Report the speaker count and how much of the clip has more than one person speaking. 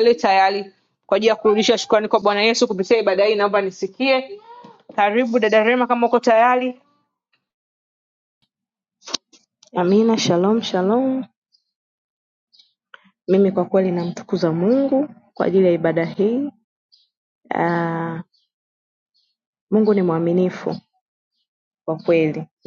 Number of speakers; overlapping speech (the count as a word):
two, no overlap